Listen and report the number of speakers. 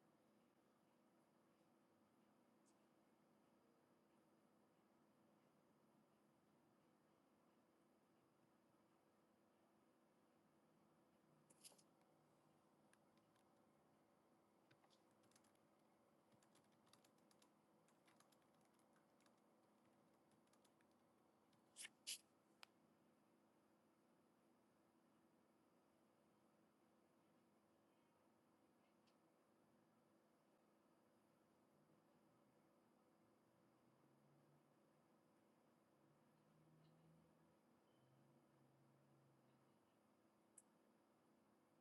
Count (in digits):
0